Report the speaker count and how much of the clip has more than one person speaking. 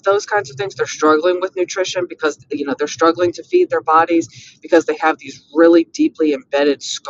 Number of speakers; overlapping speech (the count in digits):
1, no overlap